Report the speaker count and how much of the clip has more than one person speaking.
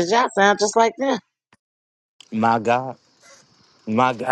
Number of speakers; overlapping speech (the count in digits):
2, no overlap